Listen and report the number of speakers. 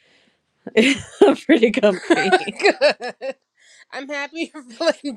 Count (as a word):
two